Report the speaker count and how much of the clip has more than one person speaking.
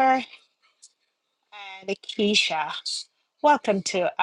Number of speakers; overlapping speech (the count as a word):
one, no overlap